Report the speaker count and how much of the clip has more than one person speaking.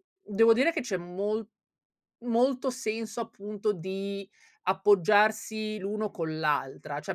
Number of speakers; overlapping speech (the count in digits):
1, no overlap